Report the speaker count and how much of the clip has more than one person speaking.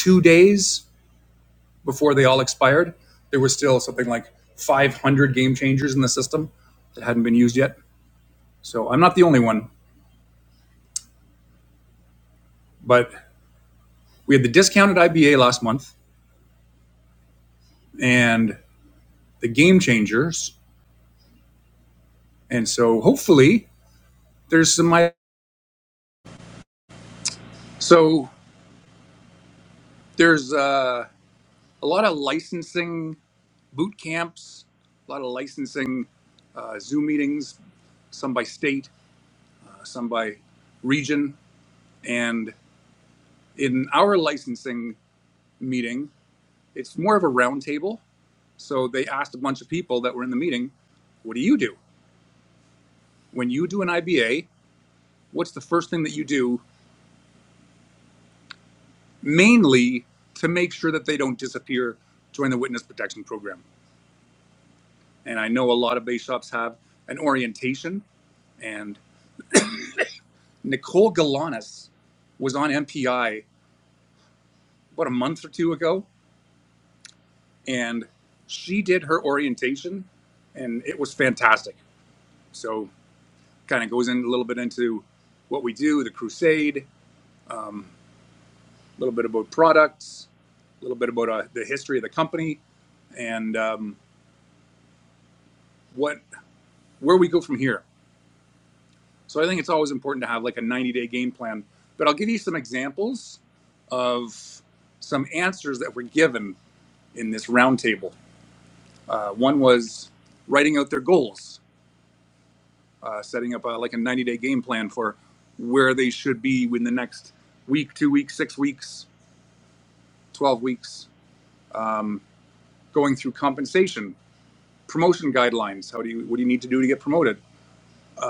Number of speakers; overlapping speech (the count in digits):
1, no overlap